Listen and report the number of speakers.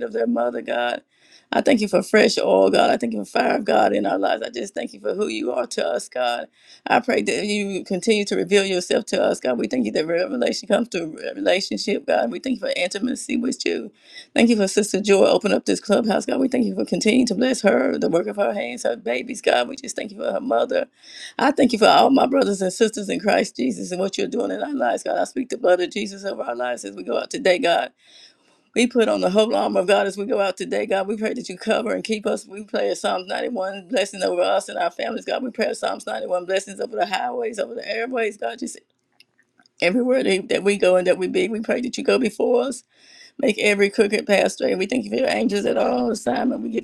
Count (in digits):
1